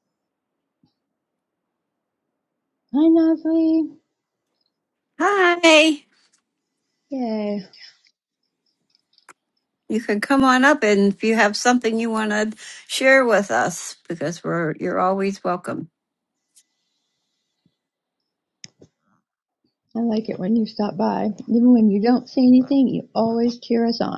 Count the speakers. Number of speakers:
2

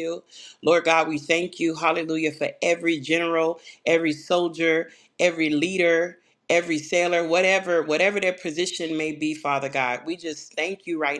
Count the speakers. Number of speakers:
1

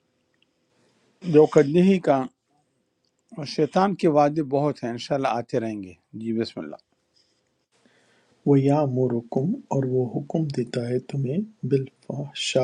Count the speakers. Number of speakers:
2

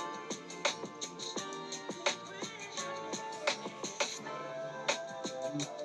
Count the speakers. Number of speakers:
0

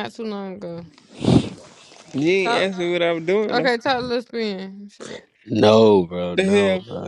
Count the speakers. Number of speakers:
3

